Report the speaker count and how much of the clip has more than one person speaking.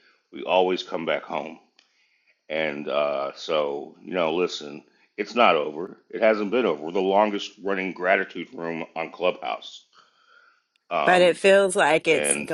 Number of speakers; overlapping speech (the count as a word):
two, about 5%